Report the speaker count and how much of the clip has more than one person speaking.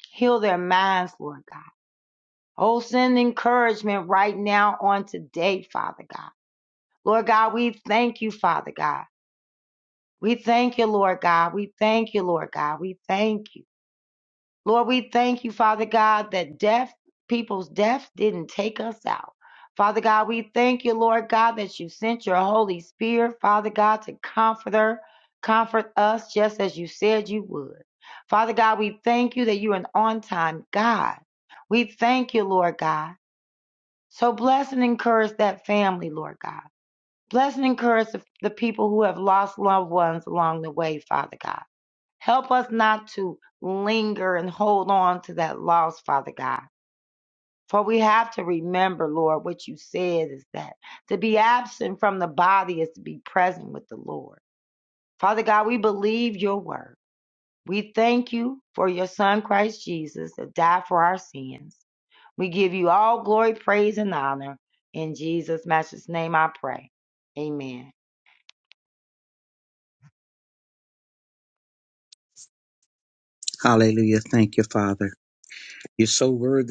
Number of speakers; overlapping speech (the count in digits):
2, no overlap